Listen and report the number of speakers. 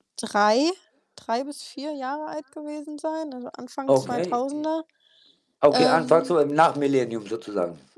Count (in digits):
2